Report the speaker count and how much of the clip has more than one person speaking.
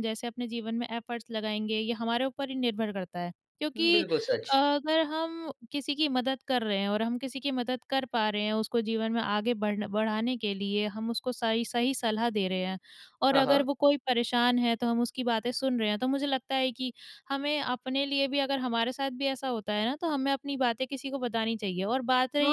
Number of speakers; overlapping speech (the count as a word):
two, about 4%